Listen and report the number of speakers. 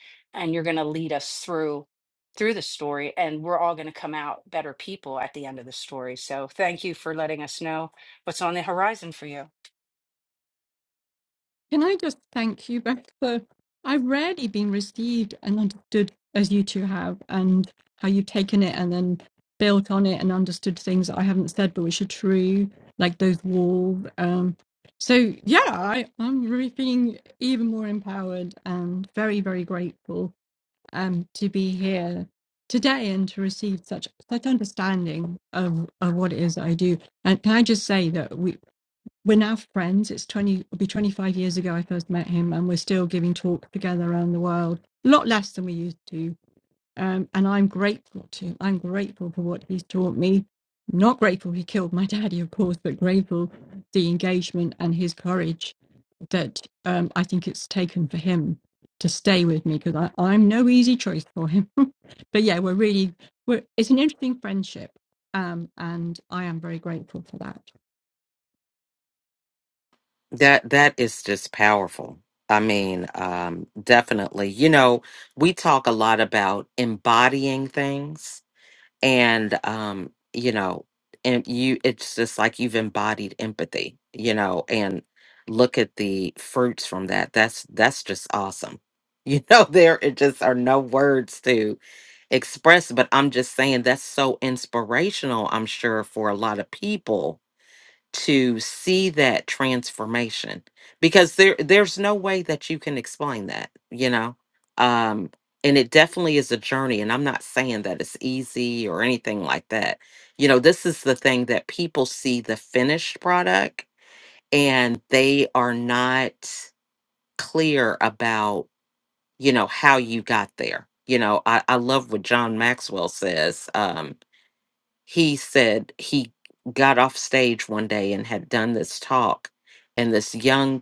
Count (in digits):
3